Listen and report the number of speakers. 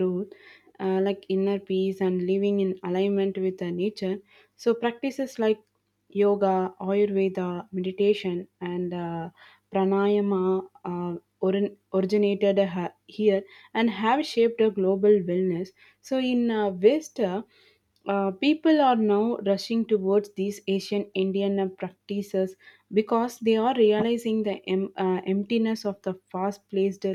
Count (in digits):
1